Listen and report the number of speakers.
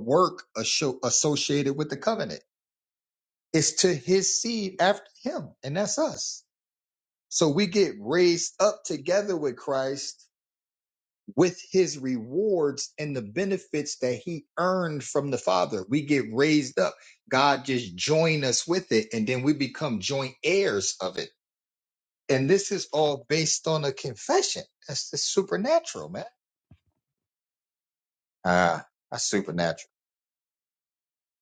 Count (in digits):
1